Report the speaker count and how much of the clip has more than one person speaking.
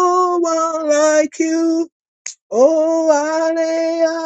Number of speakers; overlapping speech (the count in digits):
1, no overlap